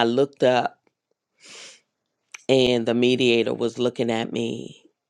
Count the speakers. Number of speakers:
1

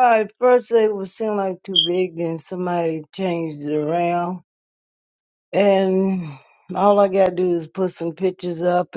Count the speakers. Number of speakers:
1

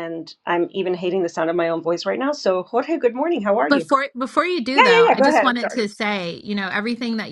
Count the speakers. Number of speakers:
2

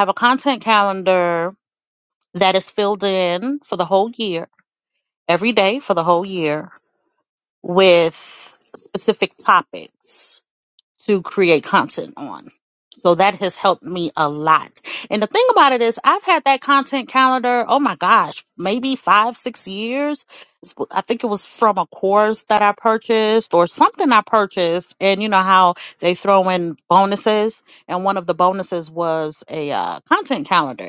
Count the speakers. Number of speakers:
1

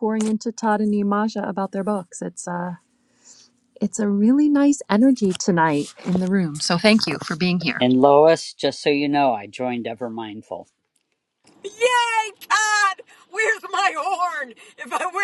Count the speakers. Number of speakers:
3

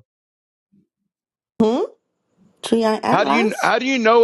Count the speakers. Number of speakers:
2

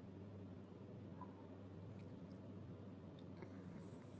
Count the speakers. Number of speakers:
0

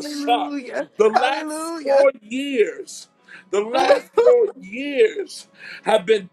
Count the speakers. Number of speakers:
2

